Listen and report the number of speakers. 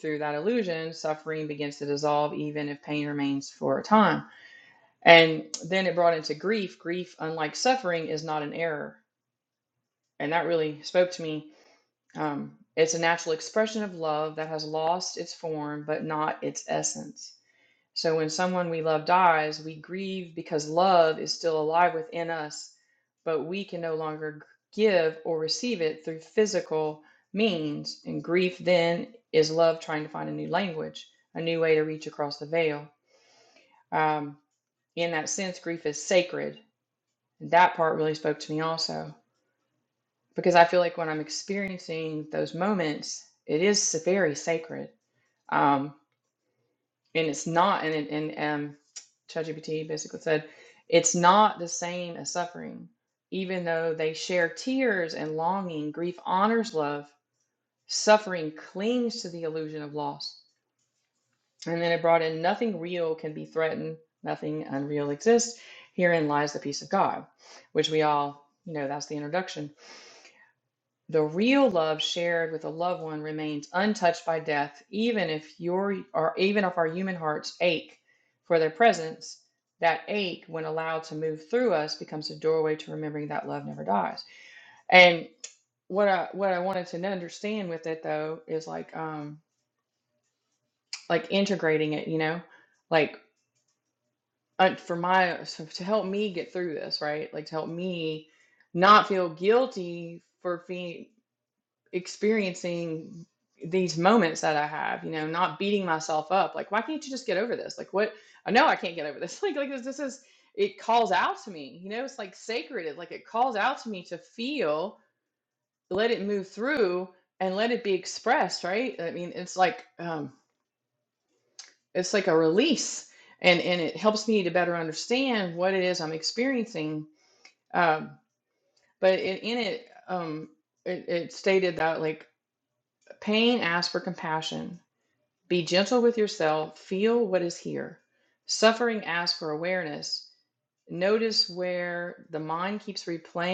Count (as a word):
one